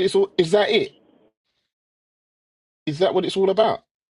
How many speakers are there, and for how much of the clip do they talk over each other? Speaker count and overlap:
1, no overlap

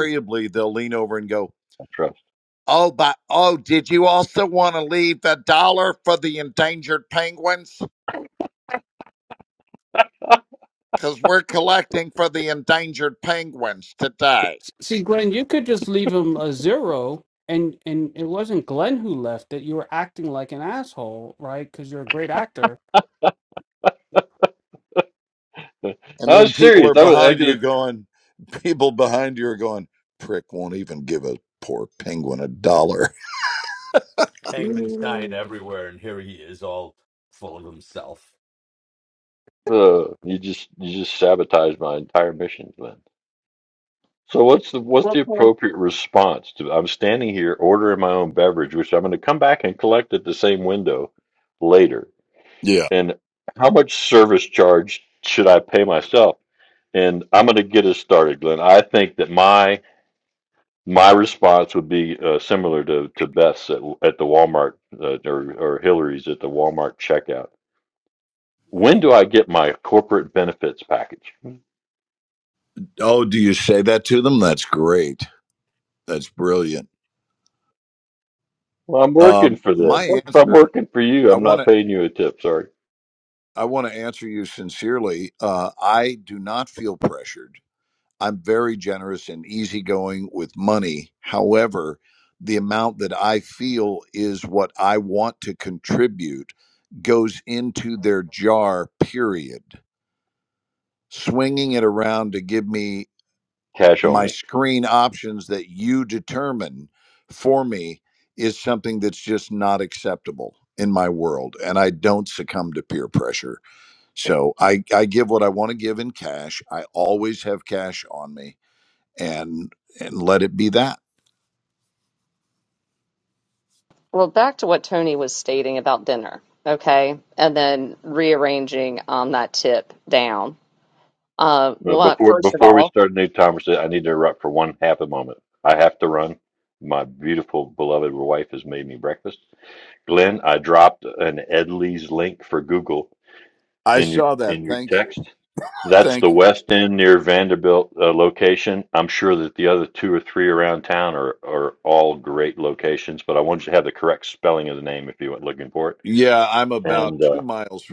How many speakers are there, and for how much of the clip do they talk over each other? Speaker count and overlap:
5, about 4%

